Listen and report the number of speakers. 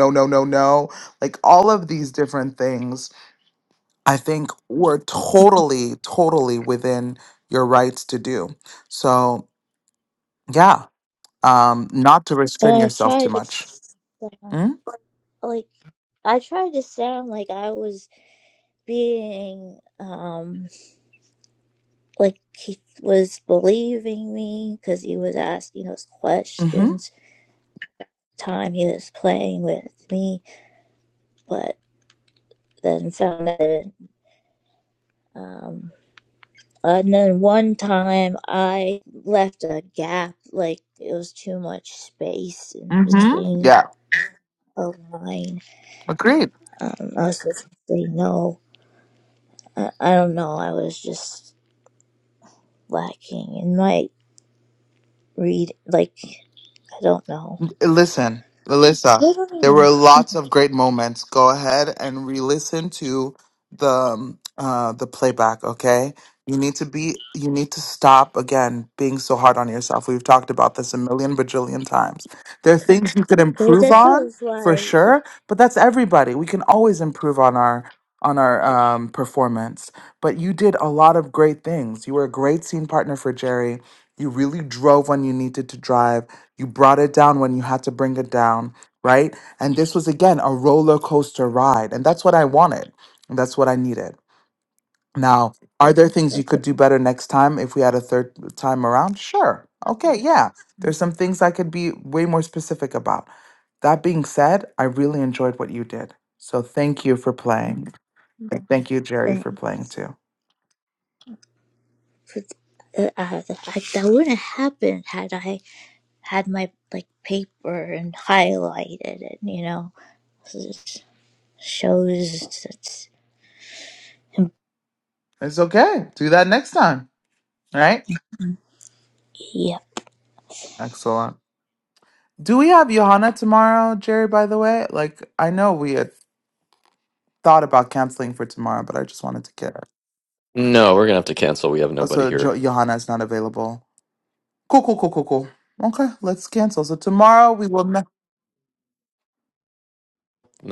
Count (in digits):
3